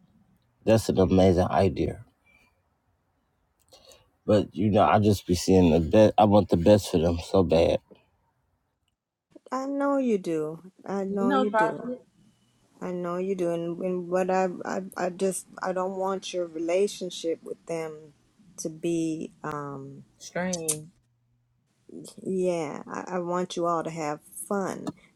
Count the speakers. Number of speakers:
three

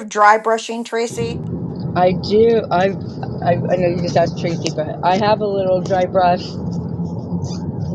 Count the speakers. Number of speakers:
two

